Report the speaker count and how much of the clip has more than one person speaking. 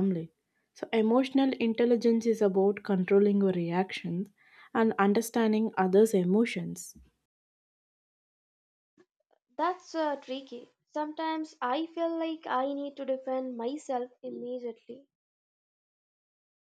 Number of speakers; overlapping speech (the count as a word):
two, no overlap